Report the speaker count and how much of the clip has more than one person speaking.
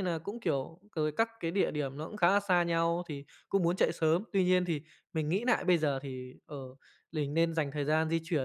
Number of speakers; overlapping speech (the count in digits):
1, no overlap